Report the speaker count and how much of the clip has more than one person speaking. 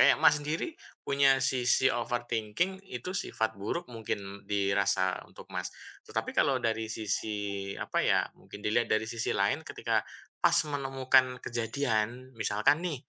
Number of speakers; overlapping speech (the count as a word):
one, no overlap